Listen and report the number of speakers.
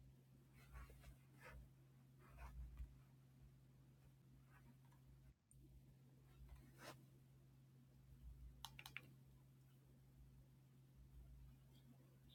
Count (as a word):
zero